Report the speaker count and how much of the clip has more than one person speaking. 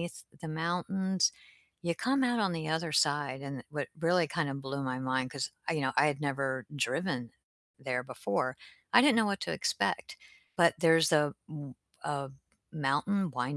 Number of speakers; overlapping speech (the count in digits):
1, no overlap